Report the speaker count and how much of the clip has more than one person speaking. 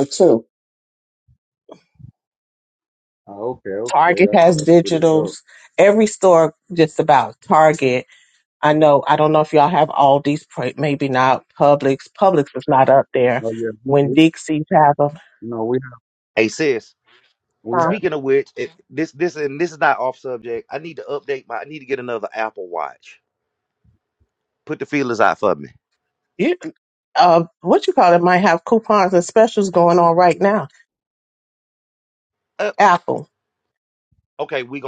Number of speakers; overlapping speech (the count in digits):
3, about 6%